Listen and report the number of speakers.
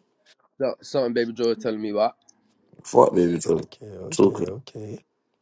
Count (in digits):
3